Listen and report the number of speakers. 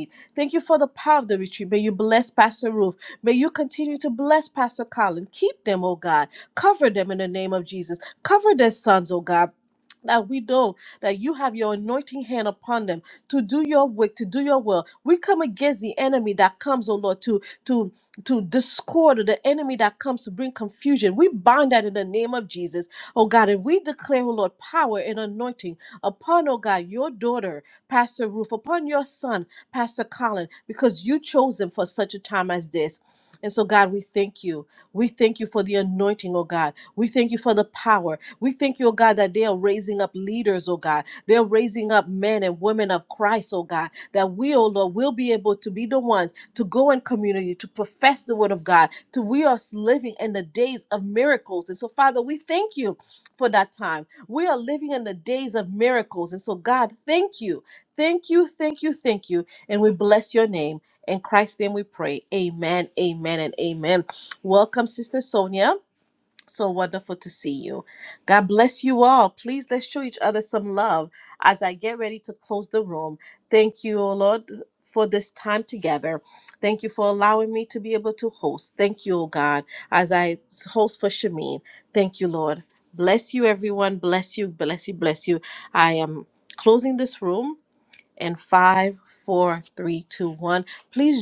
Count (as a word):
one